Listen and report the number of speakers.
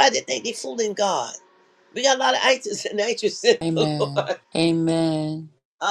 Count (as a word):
two